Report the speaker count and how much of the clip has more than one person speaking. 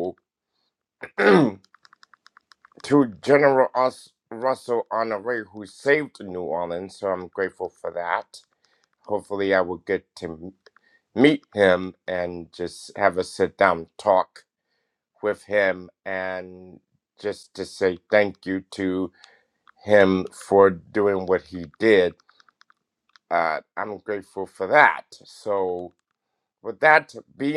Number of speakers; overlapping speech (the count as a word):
one, no overlap